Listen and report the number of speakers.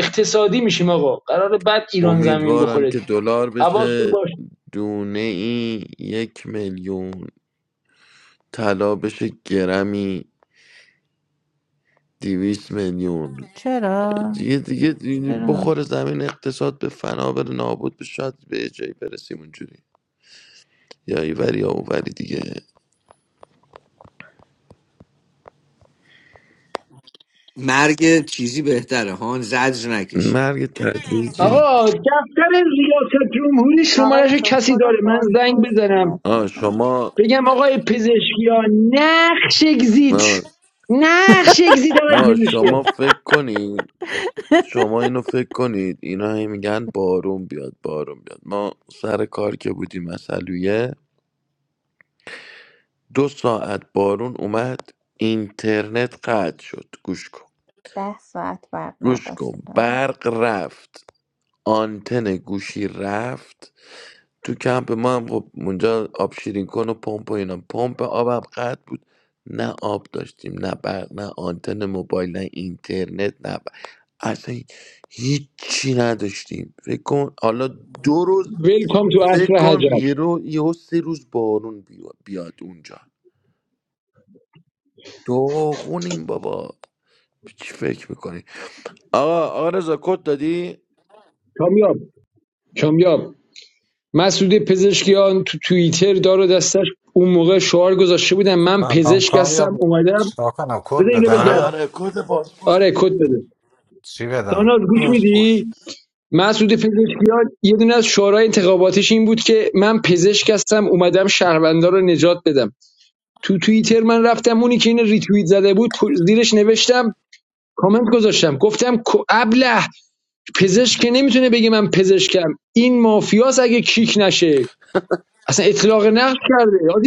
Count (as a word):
six